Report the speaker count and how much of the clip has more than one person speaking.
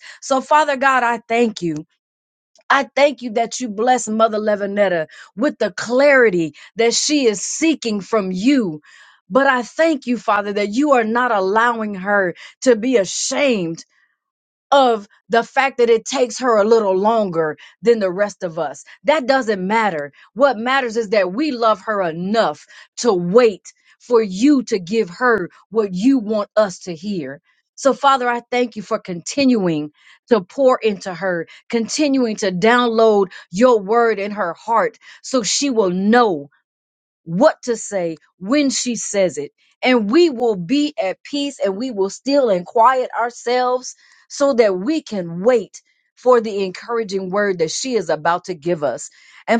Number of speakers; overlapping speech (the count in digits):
1, no overlap